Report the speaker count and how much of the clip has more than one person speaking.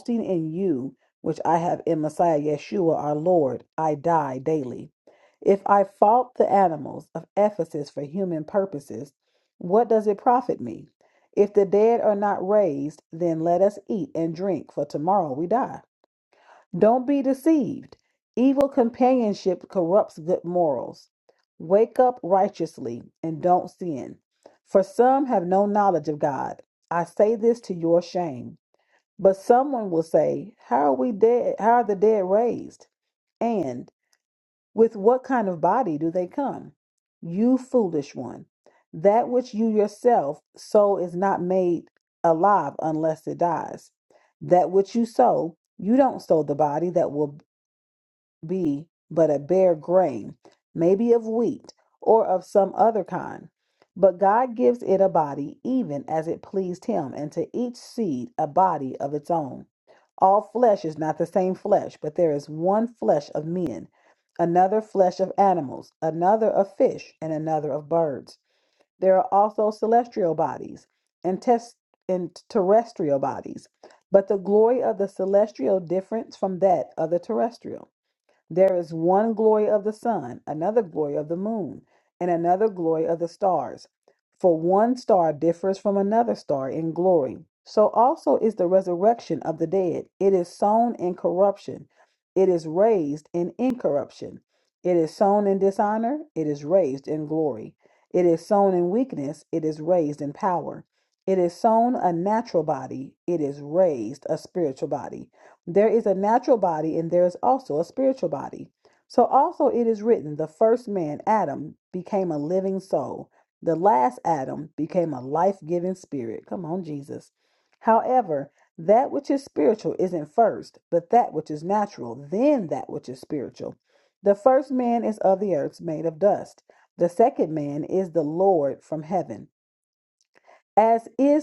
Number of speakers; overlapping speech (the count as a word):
one, no overlap